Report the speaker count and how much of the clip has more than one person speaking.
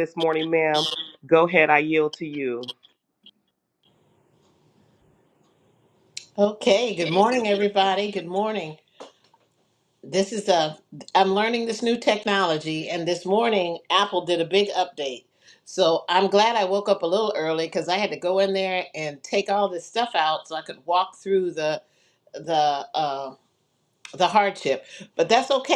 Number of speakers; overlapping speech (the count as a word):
two, no overlap